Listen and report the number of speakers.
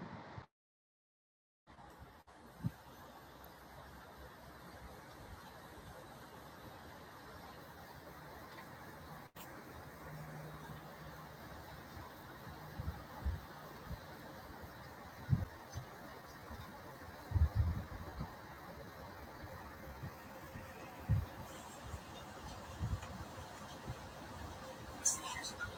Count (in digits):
0